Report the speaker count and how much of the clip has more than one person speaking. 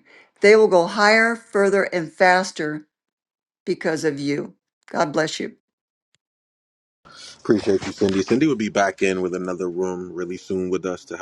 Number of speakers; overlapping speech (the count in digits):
2, no overlap